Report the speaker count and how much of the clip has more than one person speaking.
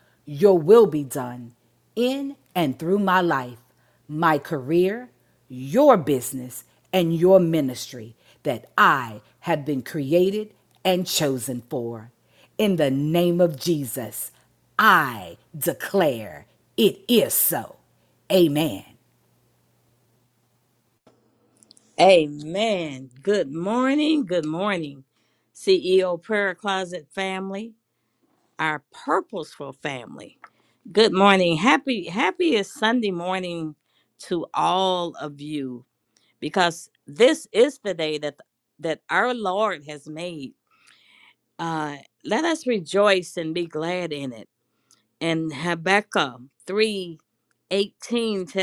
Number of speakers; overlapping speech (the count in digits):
2, no overlap